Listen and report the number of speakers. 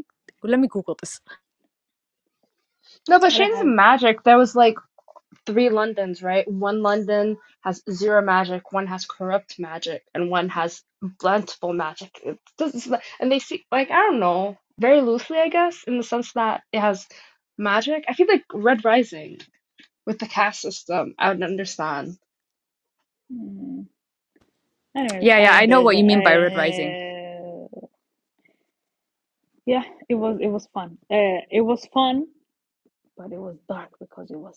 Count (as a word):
three